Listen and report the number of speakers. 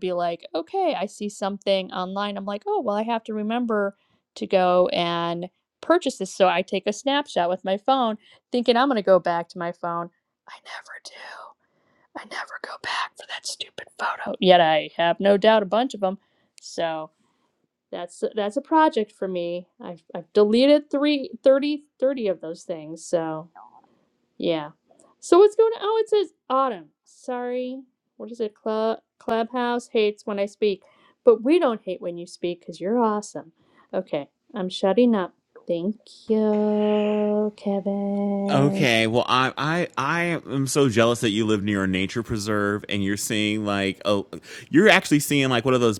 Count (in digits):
2